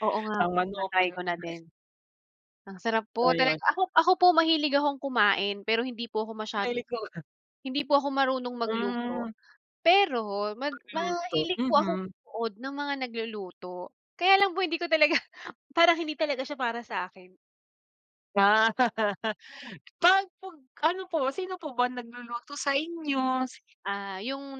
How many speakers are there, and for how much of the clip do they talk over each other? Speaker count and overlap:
2, about 14%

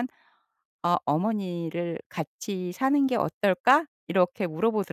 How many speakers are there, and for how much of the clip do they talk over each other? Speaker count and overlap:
1, no overlap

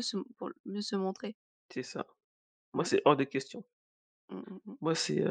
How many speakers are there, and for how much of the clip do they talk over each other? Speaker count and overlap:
2, about 3%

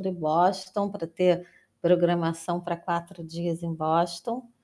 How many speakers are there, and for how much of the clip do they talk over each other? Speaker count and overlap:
1, no overlap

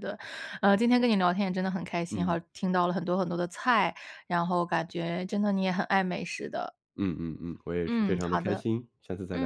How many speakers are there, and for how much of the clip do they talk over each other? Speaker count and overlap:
2, about 12%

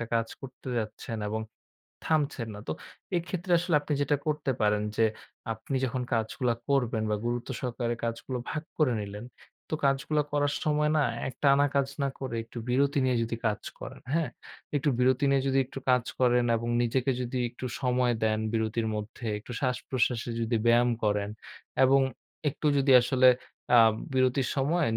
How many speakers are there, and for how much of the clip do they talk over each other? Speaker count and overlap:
1, no overlap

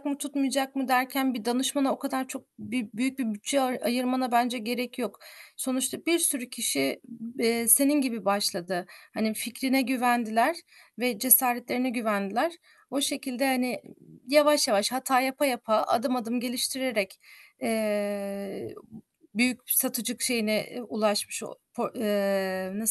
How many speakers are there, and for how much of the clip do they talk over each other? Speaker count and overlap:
1, no overlap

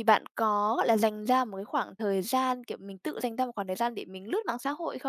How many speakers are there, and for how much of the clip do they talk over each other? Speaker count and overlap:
1, no overlap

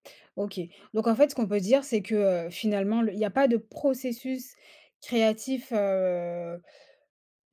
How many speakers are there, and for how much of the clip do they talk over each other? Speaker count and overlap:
1, no overlap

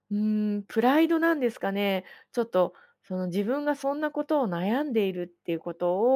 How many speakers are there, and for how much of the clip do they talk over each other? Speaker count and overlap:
1, no overlap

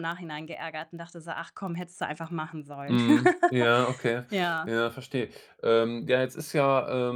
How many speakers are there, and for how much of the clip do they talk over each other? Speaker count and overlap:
2, about 3%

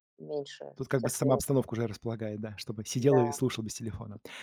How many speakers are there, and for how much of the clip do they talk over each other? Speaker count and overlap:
2, about 23%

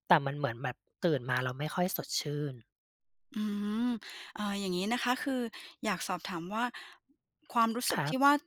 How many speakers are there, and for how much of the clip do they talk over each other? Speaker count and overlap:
2, about 3%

